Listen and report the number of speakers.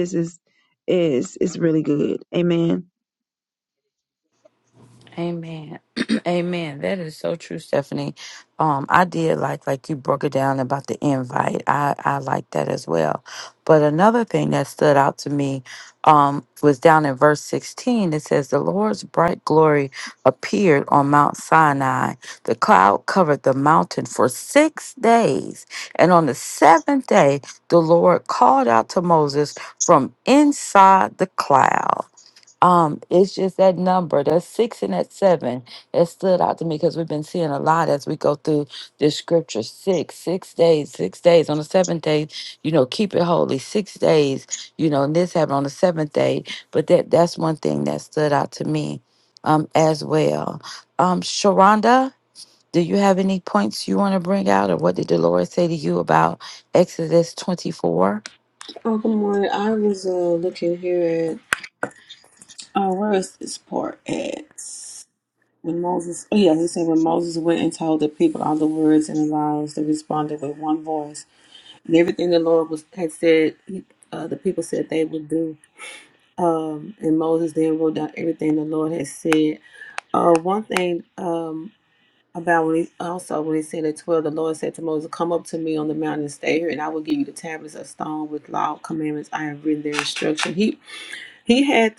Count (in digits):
3